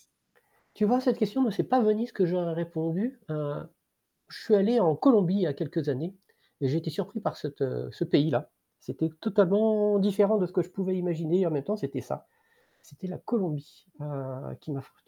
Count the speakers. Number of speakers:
1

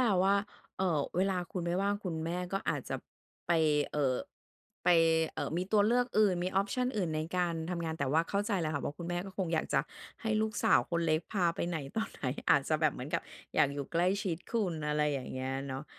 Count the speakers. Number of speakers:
1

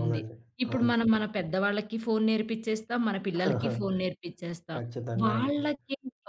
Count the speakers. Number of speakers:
2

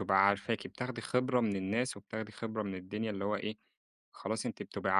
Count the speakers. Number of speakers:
1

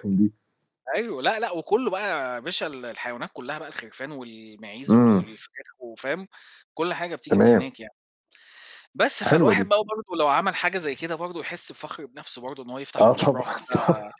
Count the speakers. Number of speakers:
2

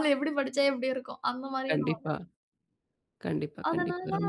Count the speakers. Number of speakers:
2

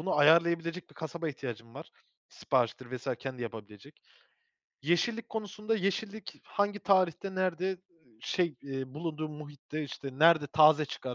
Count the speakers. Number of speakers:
1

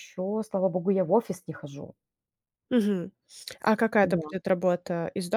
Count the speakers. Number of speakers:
2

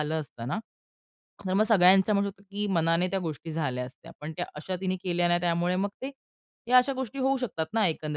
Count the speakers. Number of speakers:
1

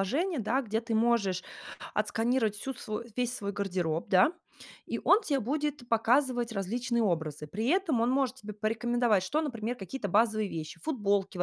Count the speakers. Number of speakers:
1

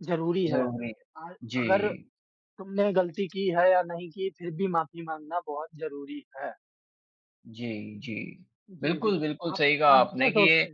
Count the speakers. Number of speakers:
2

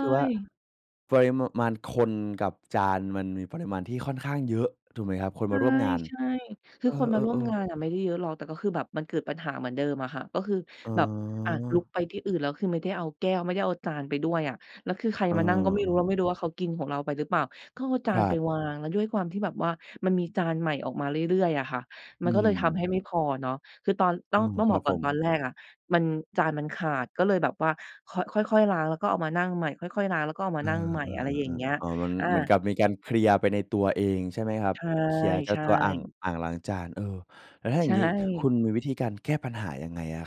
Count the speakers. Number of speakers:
2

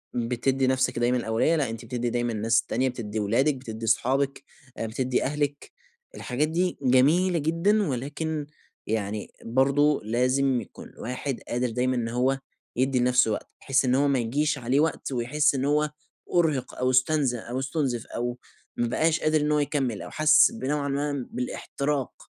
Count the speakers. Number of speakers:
1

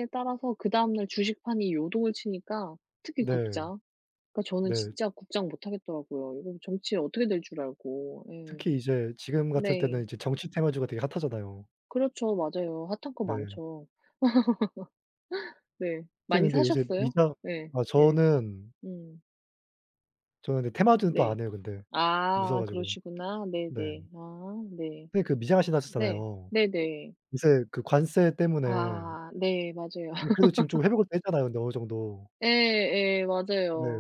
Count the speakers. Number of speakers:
2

